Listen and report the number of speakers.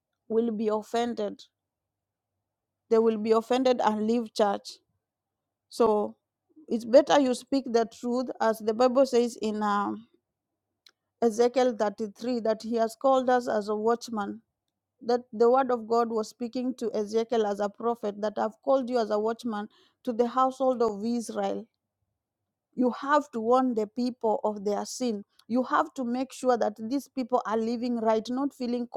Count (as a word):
one